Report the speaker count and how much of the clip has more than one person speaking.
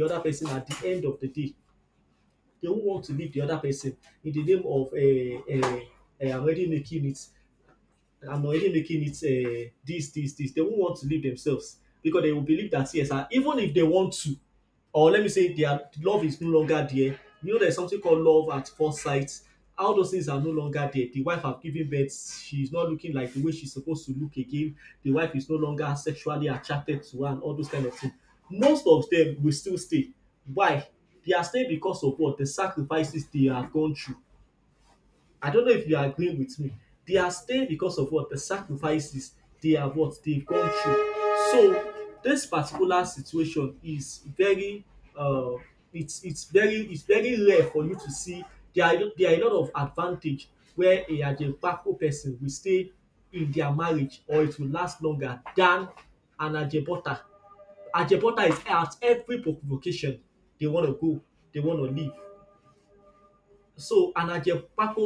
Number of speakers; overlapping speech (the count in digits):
1, no overlap